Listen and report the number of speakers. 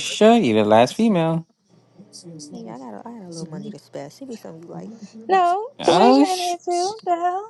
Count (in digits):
3